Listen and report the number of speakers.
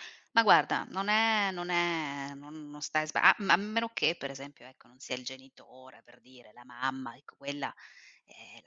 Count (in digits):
1